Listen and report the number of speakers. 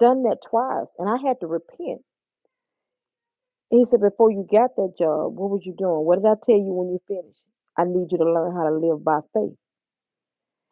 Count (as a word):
one